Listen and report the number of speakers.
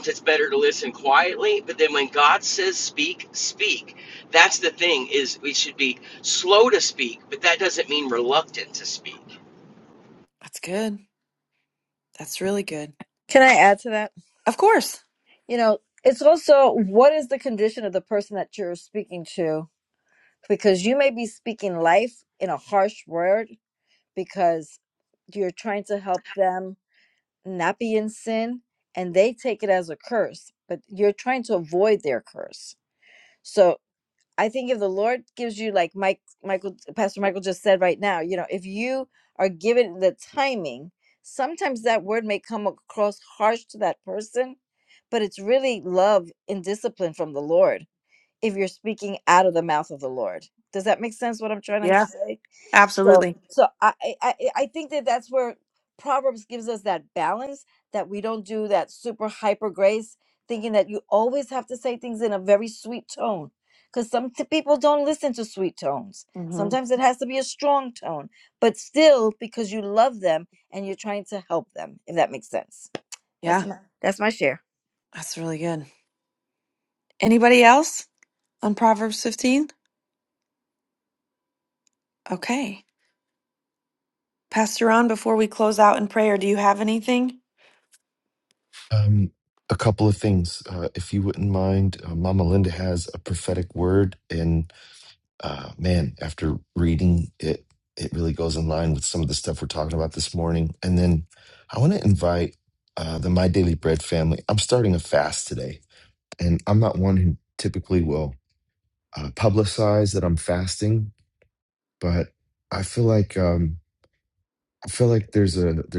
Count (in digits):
4